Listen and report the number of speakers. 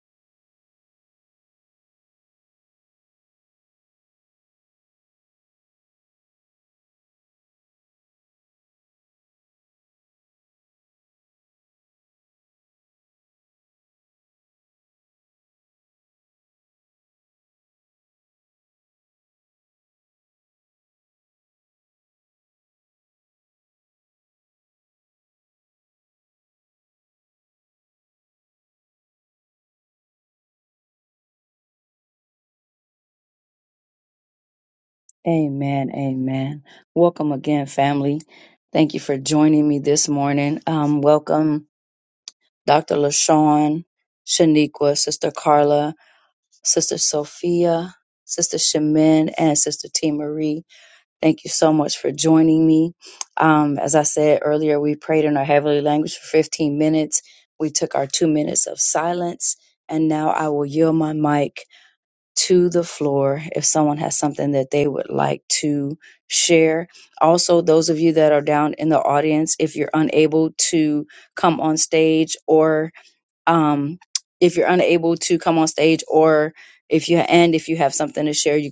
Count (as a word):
one